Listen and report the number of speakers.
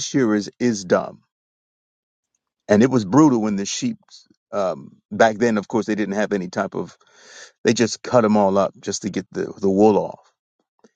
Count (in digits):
1